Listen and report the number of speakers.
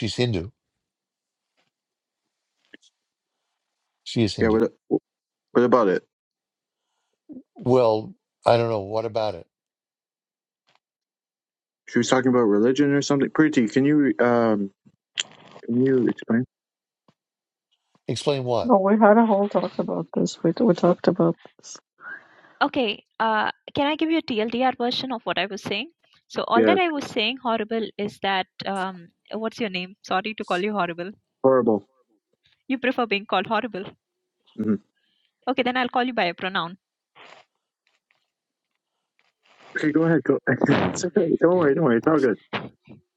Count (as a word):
four